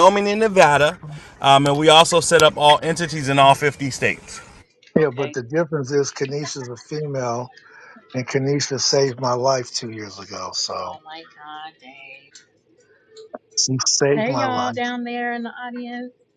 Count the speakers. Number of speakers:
three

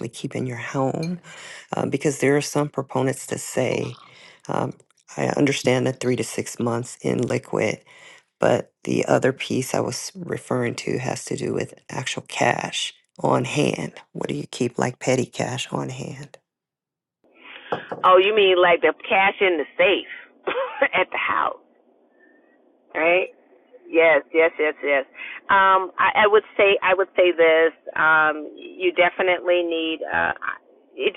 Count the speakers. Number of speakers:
two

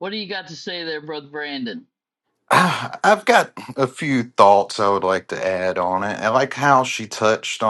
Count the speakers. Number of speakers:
two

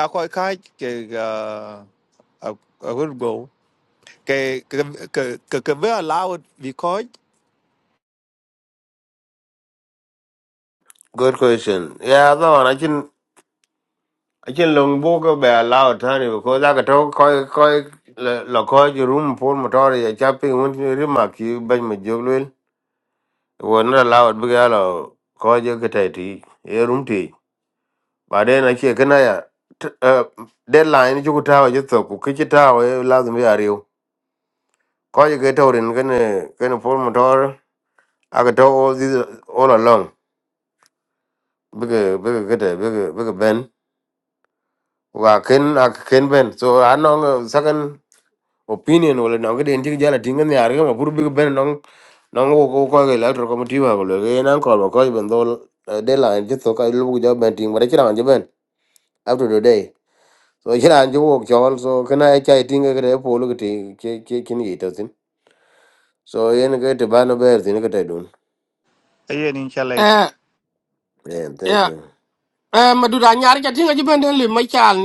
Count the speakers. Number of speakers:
three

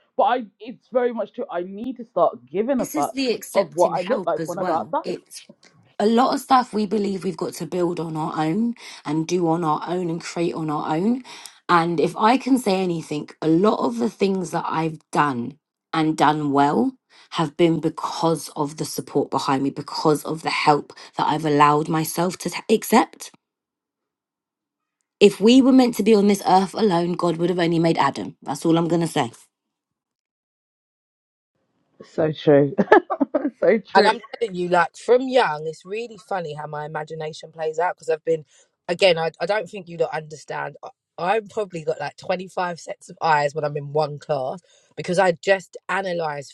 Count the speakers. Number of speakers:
three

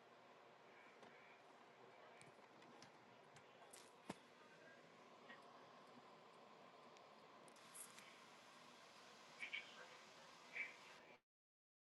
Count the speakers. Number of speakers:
zero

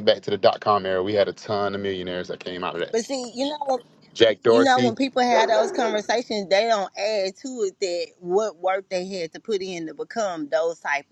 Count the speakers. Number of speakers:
two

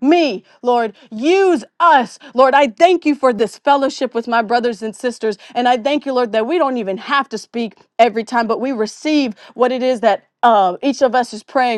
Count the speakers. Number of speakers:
one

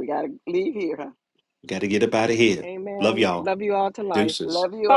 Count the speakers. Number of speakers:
three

